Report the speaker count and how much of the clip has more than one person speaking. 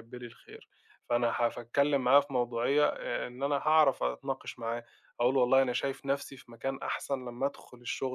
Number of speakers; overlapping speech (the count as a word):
one, no overlap